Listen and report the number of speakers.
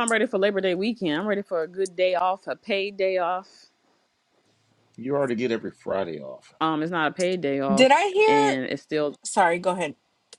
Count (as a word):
three